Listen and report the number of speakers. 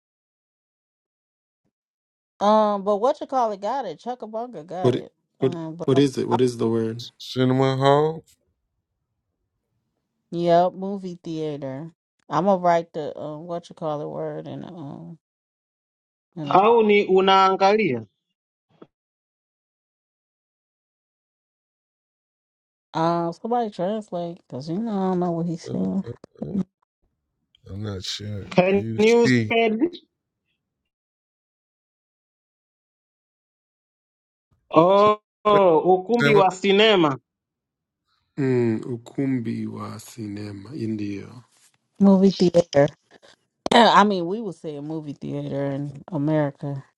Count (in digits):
4